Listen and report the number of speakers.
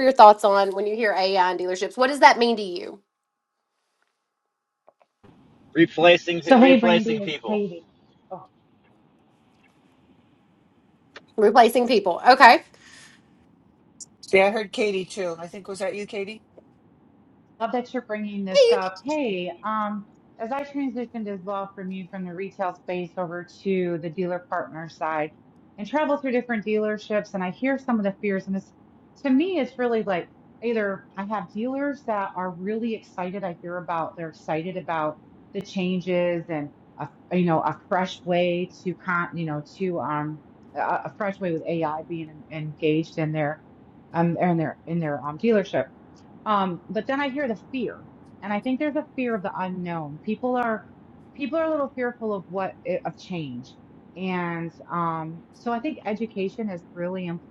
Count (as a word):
four